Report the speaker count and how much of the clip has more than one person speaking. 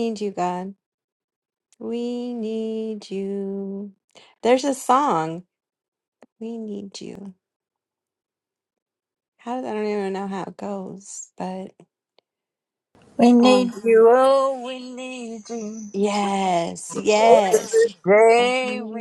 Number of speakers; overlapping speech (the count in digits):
2, about 9%